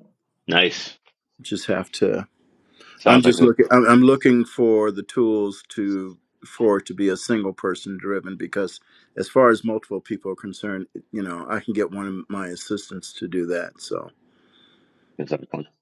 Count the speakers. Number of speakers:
two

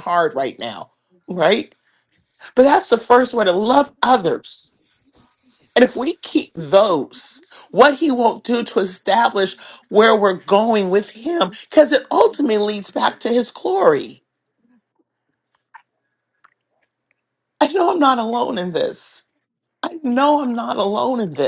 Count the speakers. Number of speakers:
one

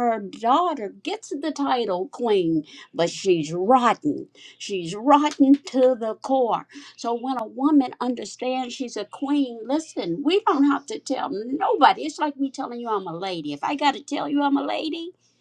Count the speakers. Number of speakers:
one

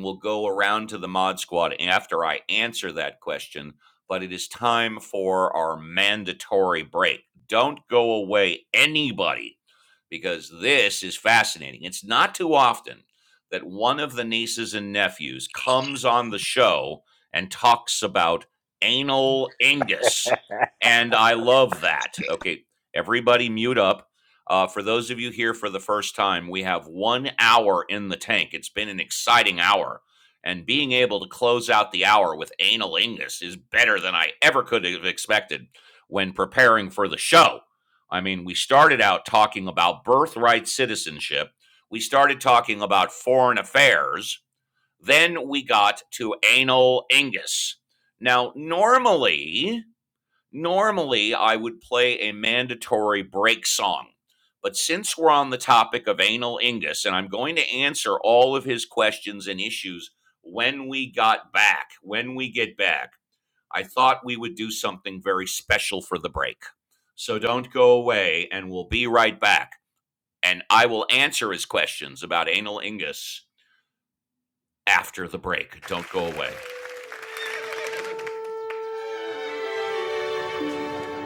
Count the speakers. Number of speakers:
one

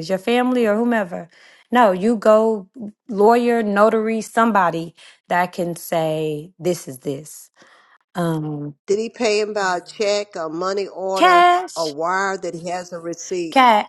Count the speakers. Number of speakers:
two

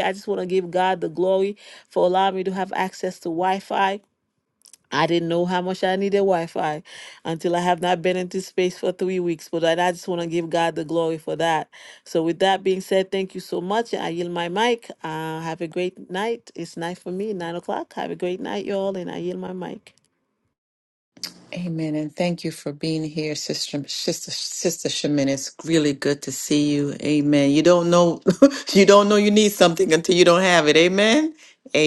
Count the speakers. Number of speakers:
two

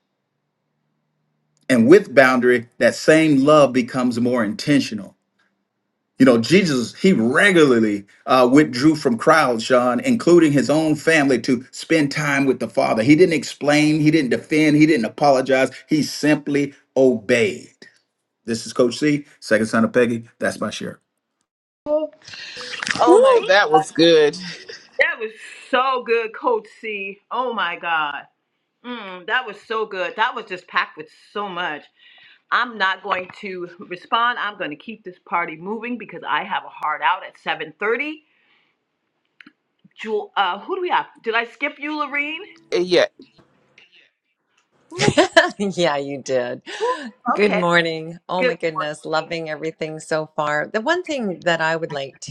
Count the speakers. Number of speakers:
four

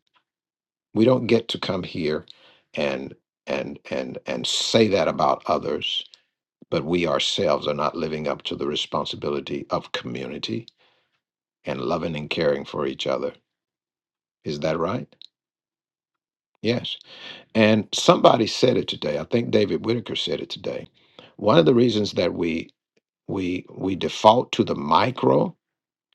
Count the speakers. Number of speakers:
one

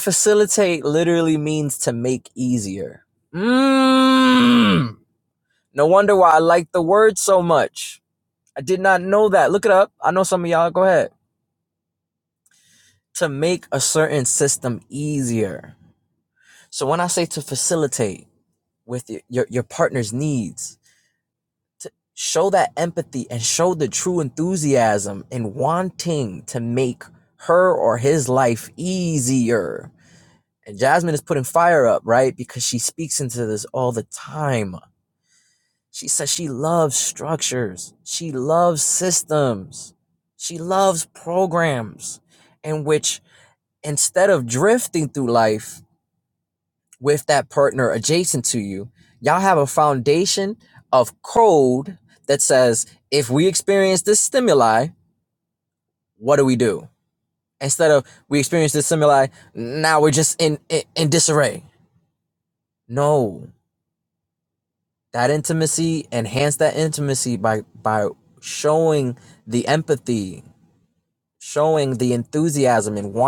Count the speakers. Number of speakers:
one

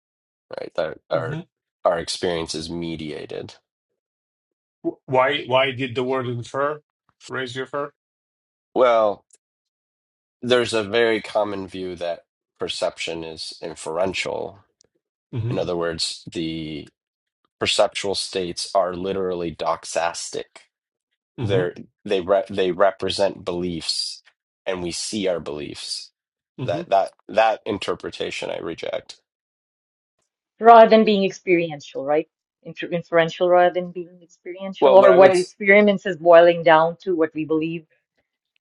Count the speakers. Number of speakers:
three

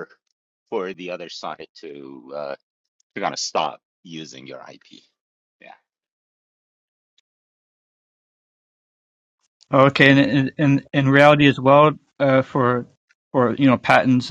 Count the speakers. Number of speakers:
two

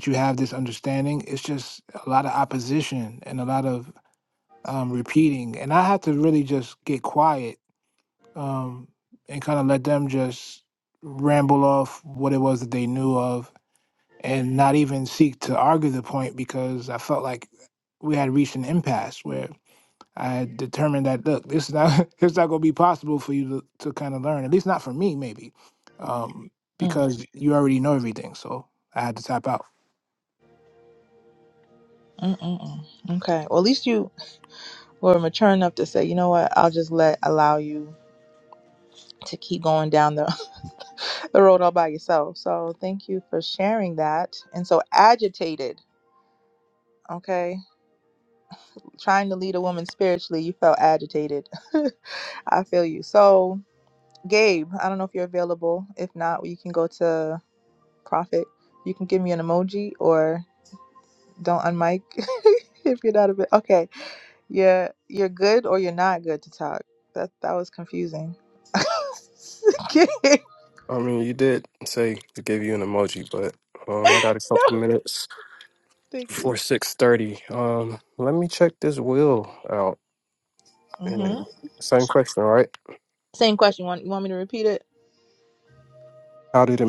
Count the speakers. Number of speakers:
three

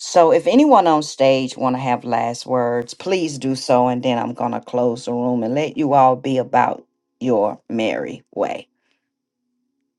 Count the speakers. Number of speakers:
one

